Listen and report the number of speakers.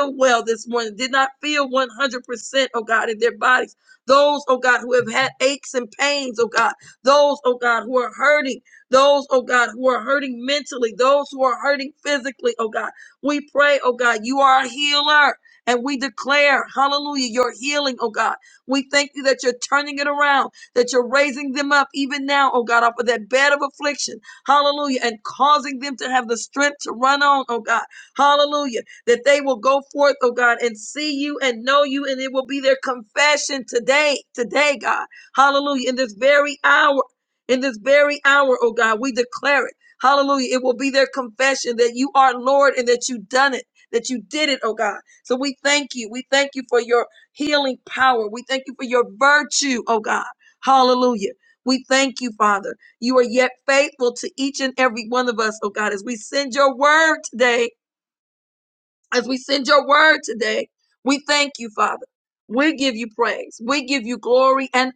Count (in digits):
1